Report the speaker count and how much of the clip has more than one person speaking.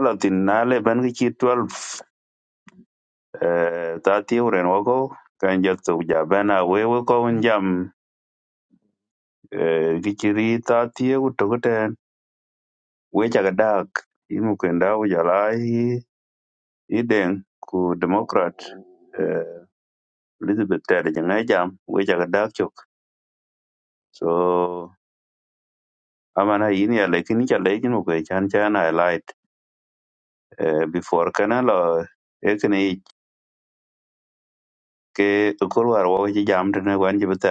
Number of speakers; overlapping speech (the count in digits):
1, no overlap